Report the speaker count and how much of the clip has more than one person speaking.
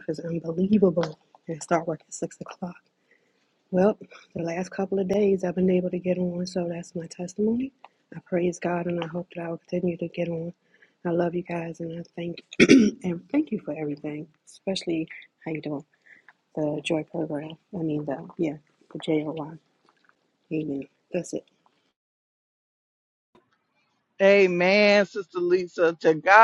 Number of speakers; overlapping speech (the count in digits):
2, no overlap